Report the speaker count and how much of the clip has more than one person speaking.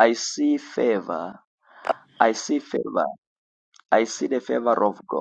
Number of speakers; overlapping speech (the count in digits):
1, no overlap